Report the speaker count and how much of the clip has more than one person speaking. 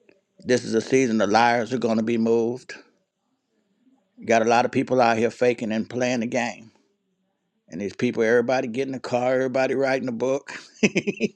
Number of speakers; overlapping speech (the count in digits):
1, no overlap